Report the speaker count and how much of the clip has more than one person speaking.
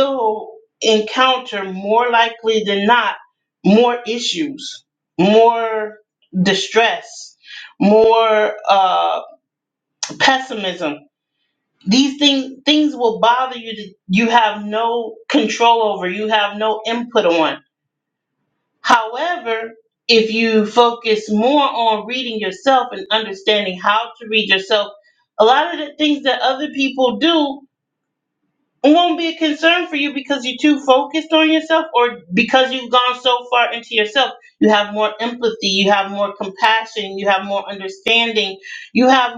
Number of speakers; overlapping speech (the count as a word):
one, no overlap